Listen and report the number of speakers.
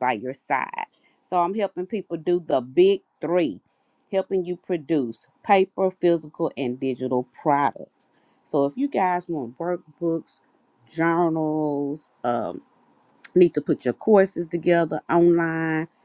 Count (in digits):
1